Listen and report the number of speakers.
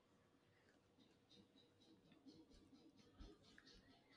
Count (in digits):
0